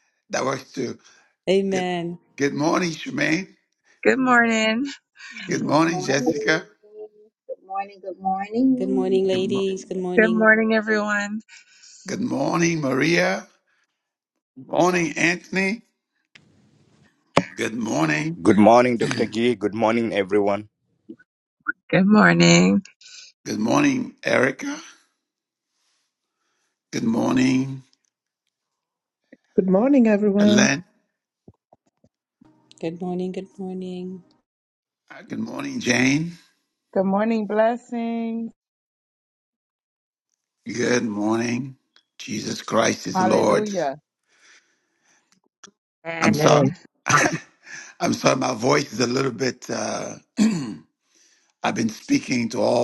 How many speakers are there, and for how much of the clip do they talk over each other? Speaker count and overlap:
7, about 7%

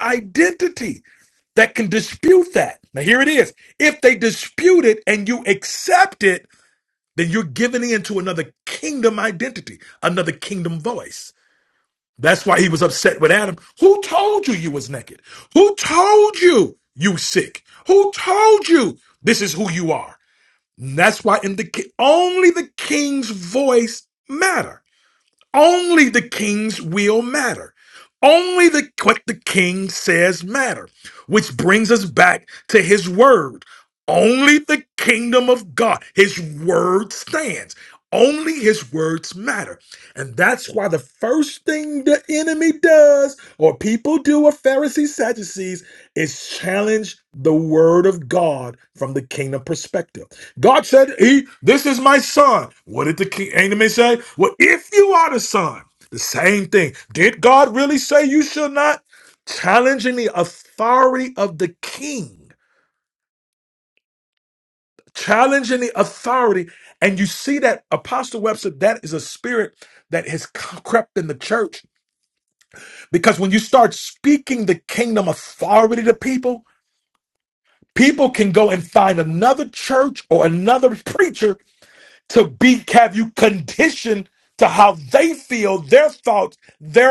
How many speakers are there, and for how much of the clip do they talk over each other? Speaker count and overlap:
1, no overlap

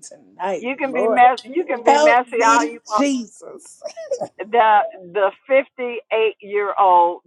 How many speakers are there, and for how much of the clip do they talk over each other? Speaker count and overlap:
2, about 25%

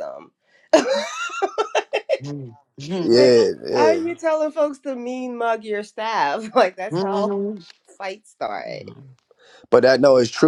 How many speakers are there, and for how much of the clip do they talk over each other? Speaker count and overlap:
3, about 10%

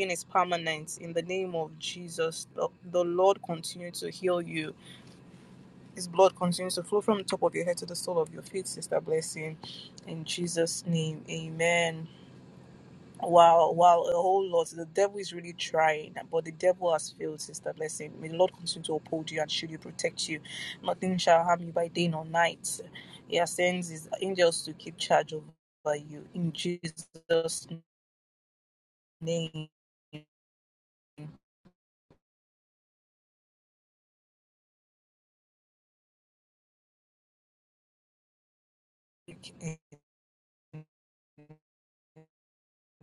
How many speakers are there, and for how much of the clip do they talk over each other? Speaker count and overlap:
1, no overlap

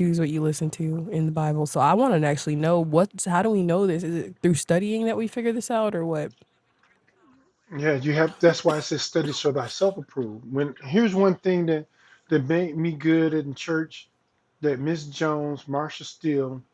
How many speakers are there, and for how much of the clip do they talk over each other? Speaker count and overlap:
2, no overlap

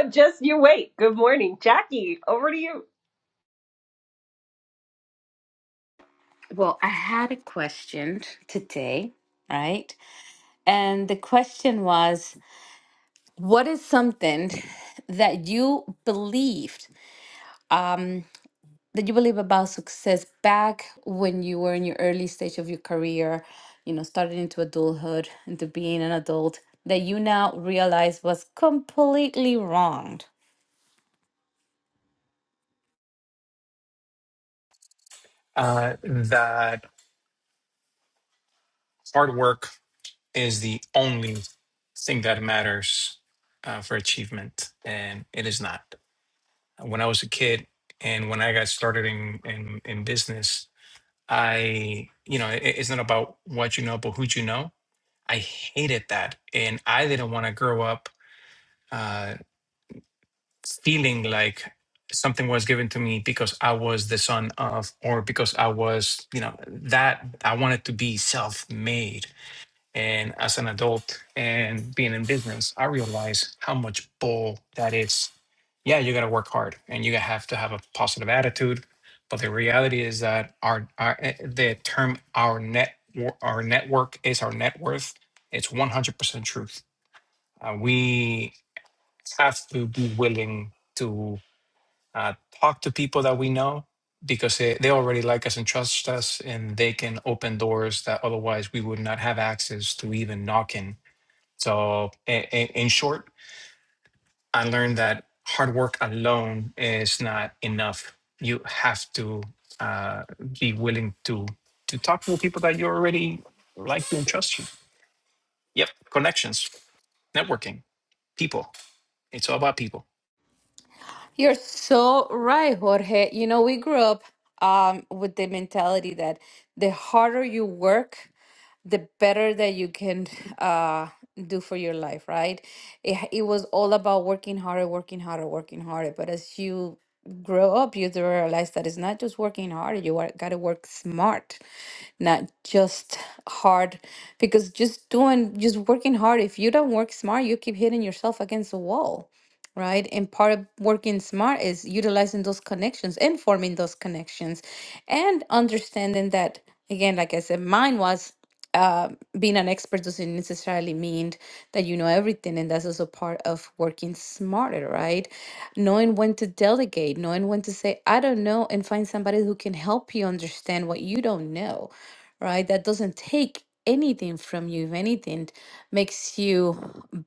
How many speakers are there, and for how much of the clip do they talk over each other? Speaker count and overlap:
3, no overlap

